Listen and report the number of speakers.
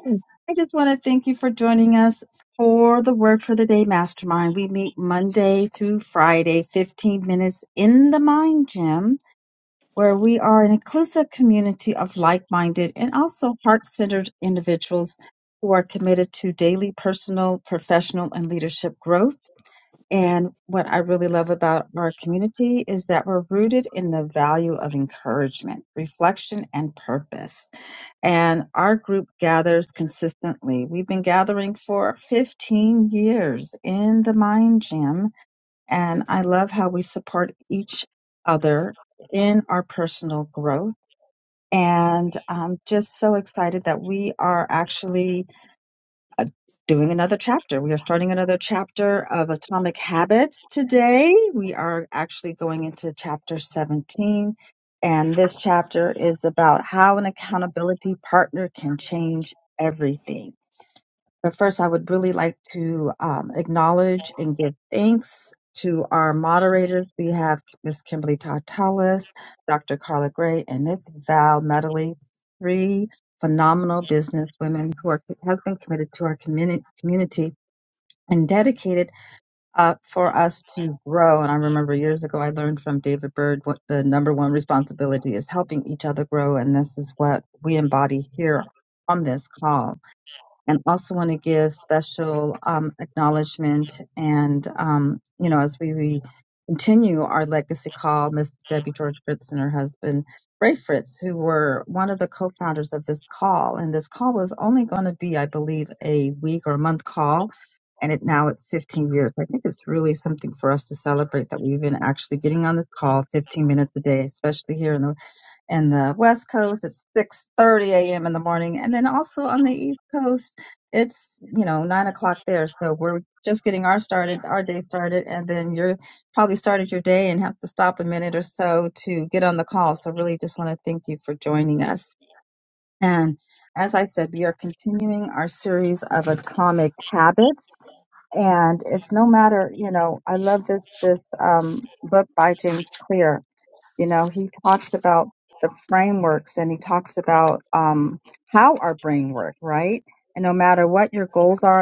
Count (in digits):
1